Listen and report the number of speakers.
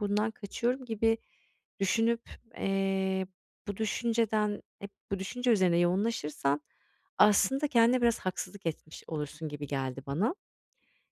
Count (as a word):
one